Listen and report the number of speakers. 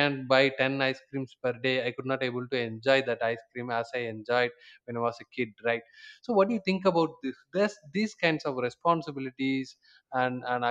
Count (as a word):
one